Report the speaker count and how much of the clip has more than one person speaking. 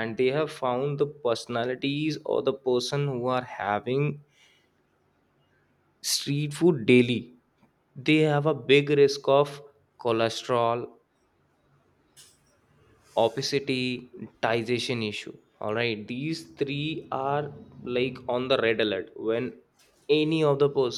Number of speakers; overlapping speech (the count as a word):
one, no overlap